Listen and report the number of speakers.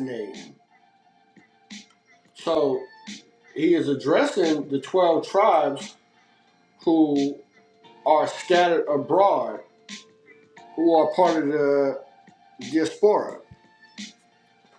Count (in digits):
1